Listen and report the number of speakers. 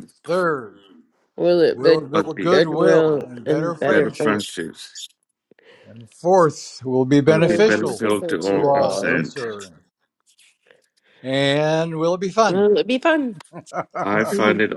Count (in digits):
3